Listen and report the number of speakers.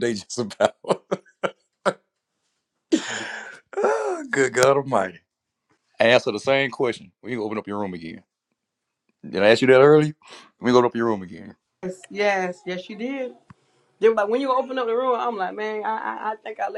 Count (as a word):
two